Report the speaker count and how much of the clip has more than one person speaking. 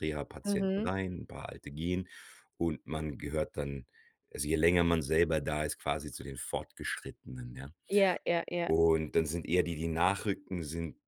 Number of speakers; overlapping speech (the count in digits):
2, about 4%